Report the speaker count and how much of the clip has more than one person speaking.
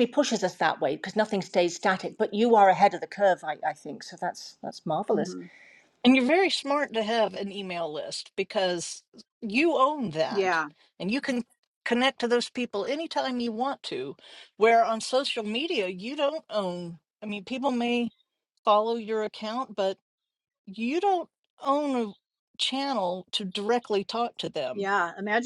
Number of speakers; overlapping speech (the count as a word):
three, about 2%